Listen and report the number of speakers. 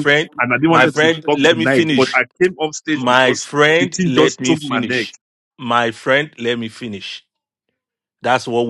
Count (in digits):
2